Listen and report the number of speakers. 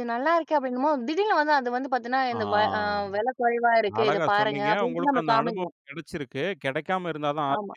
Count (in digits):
2